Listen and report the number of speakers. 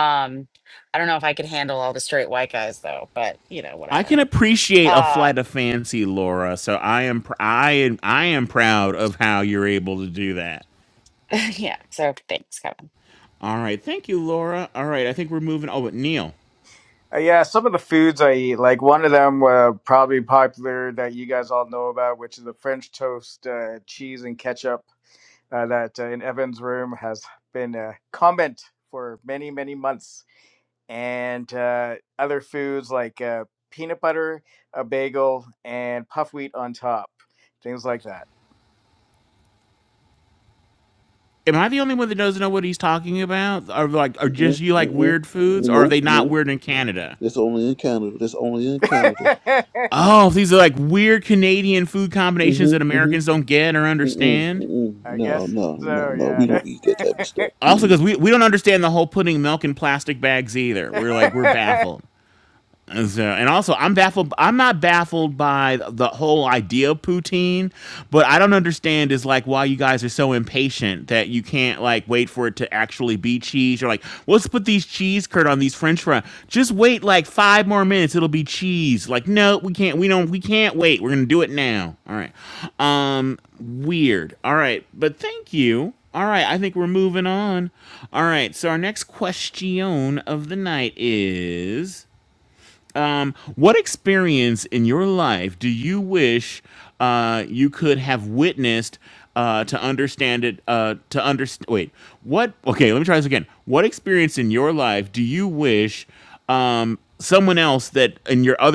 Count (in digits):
4